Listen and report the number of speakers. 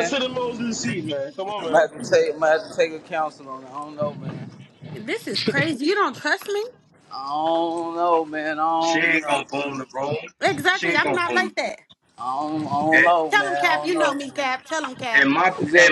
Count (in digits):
4